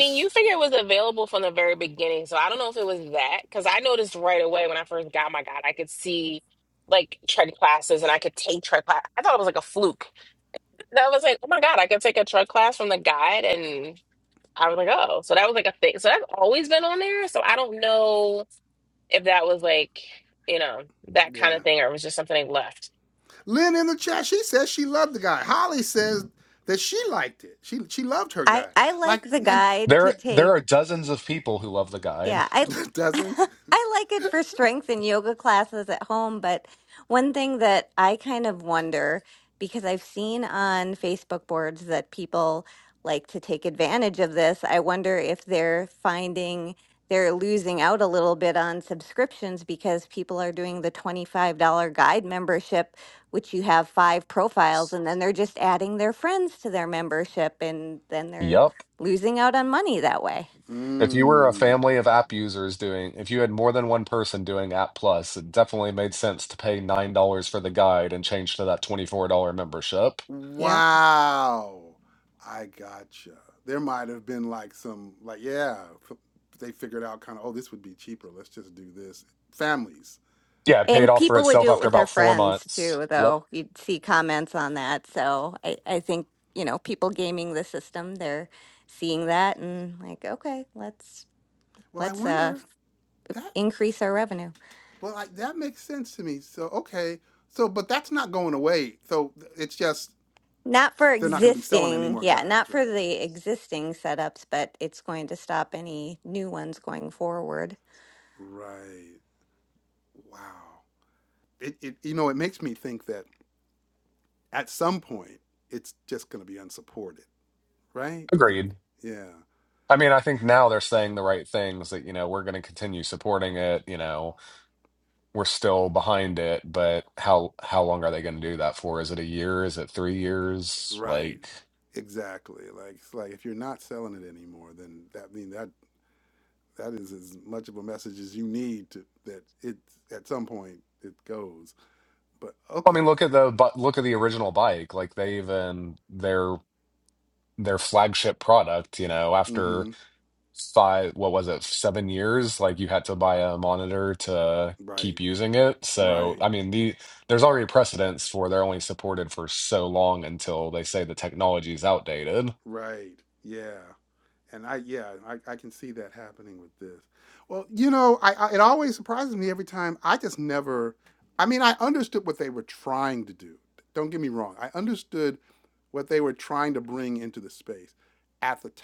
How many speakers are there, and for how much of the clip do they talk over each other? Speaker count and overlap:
4, about 6%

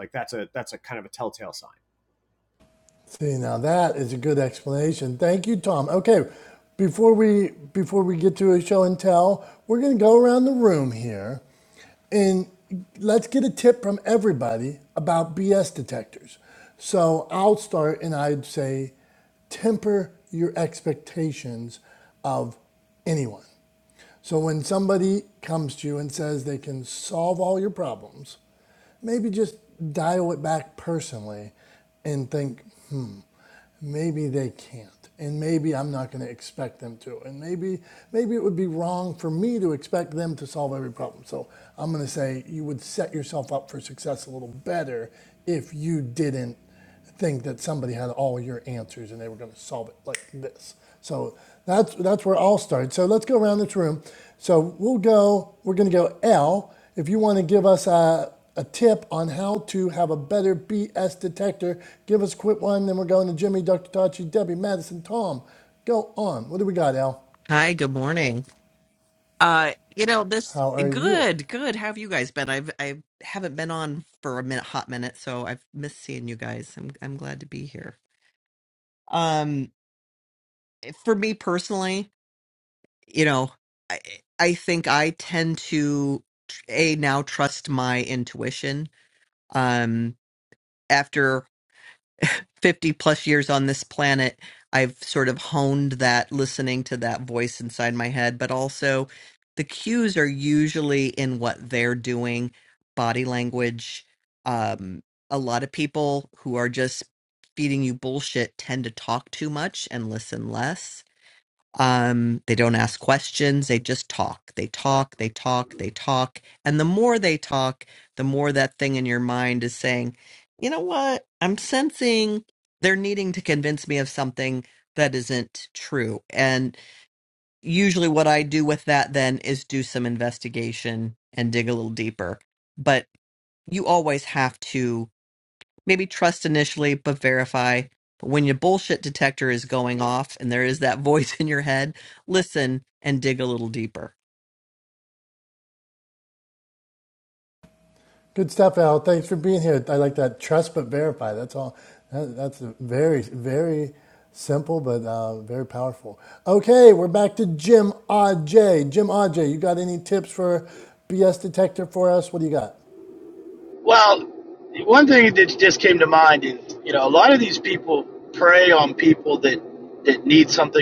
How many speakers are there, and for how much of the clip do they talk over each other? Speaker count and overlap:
4, under 1%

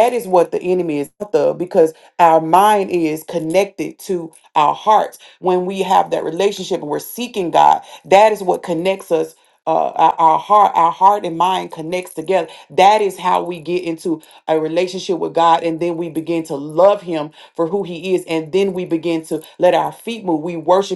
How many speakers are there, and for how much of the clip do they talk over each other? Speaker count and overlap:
1, no overlap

